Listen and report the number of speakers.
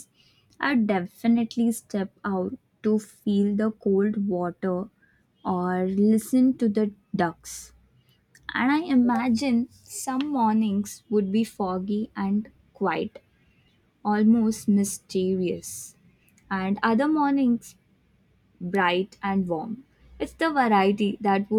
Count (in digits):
1